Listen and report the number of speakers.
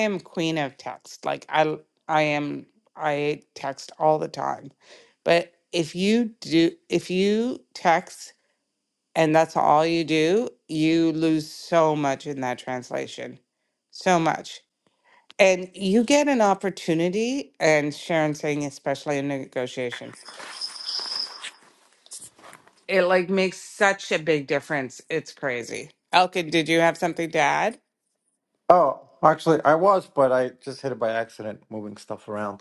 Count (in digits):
2